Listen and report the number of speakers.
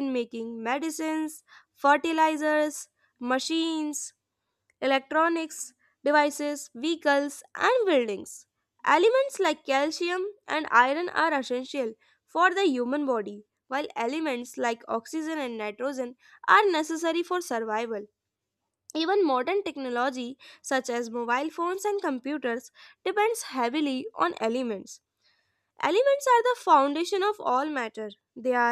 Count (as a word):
one